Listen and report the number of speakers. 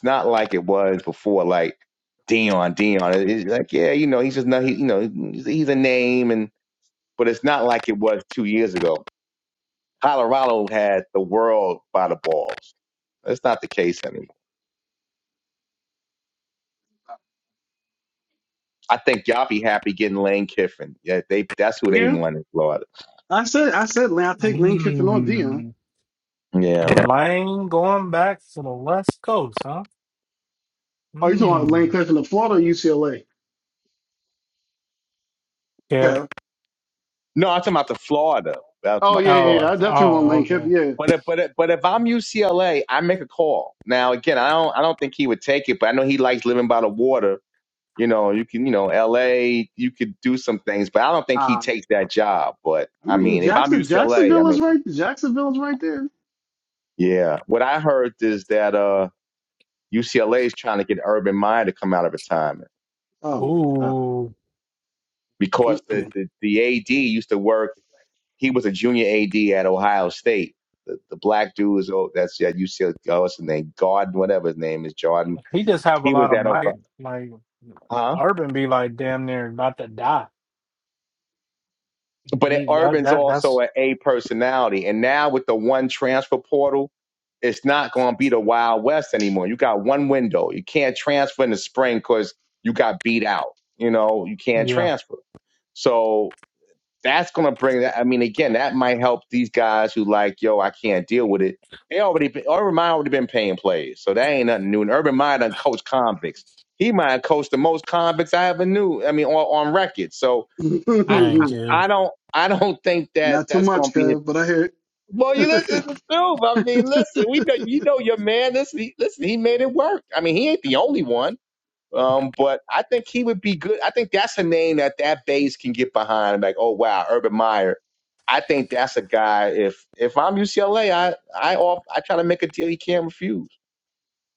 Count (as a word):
three